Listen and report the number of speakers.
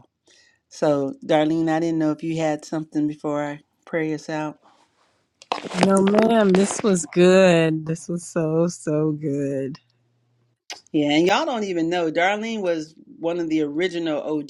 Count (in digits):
2